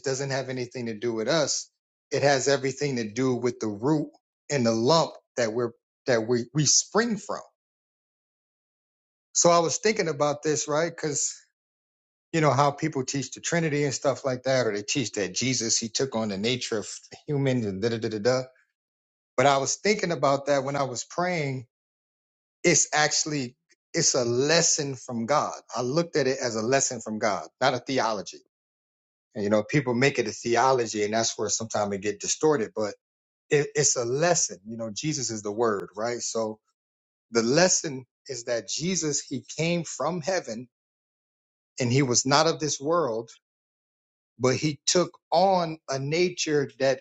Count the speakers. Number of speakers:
1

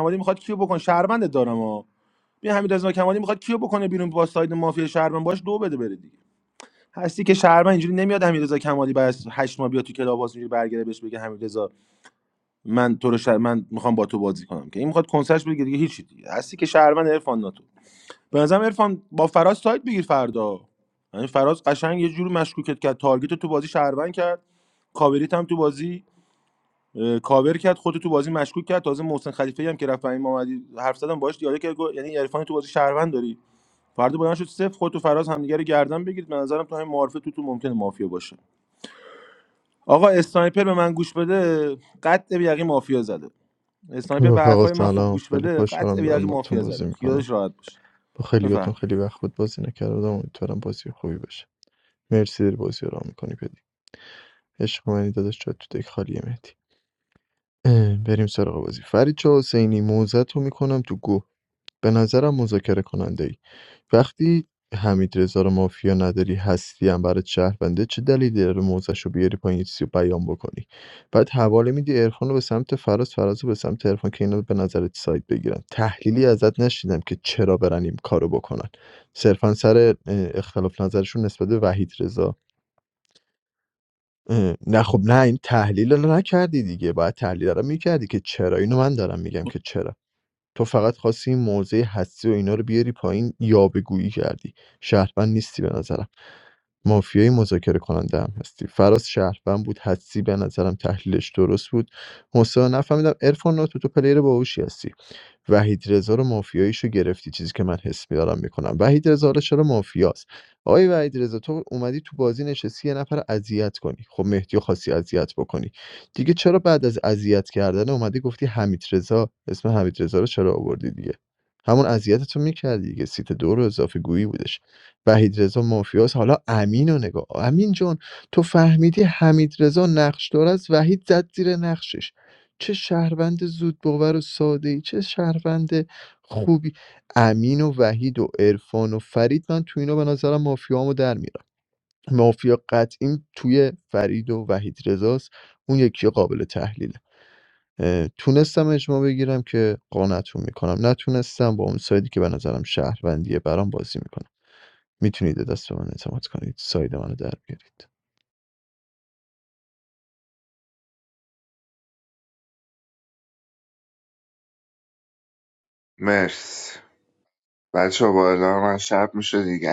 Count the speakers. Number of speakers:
3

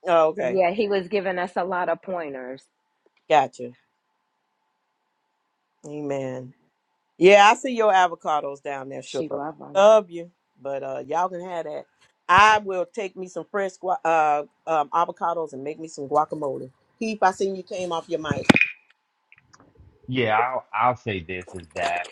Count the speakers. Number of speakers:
3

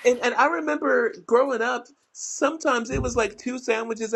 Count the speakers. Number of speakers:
1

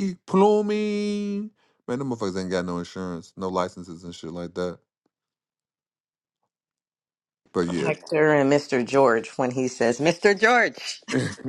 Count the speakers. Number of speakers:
2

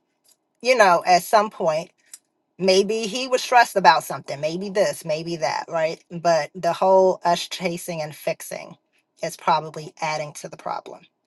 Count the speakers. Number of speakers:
1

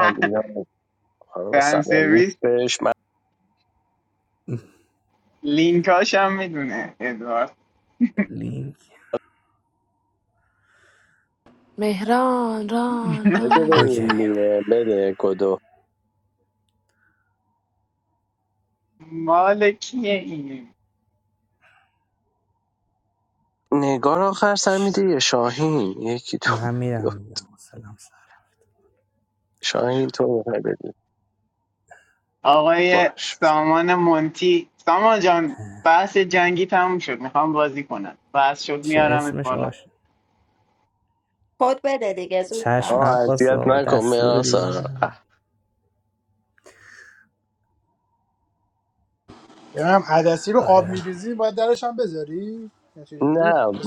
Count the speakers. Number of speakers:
6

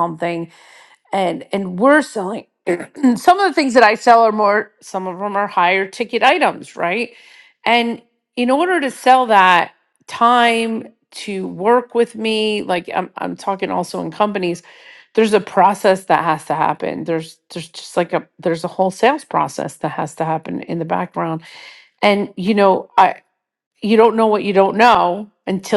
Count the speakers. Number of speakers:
1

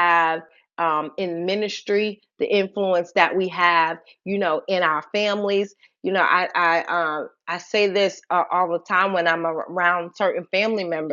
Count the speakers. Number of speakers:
1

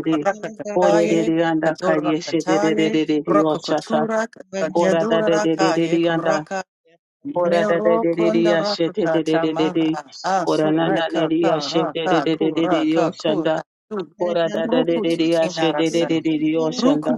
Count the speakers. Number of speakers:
2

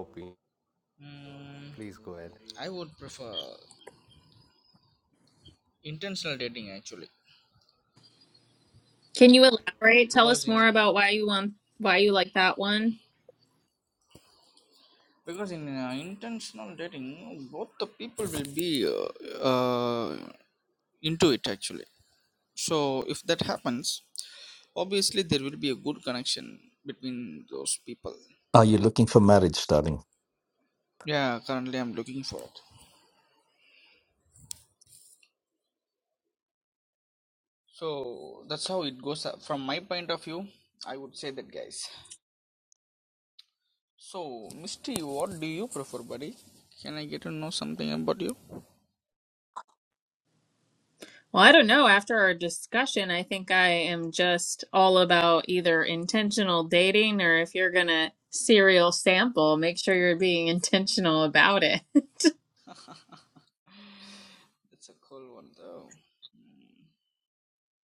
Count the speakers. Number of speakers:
4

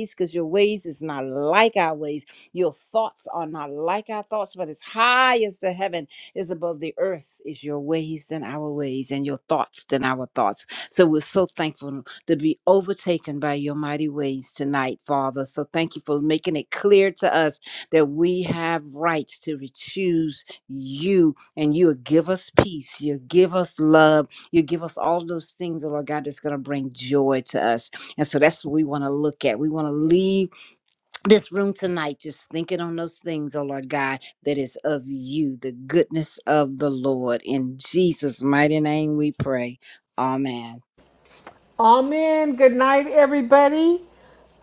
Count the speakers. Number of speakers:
2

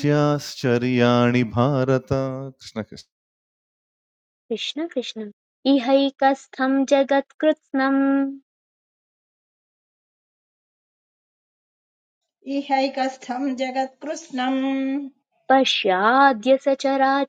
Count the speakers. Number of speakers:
3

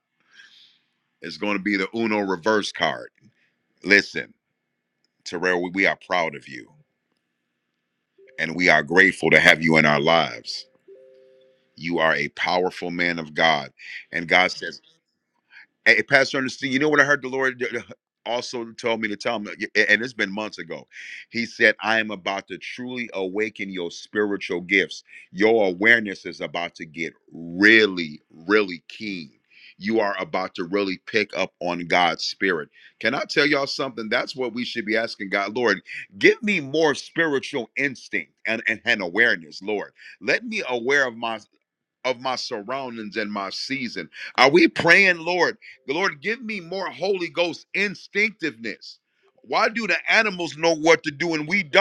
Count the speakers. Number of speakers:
1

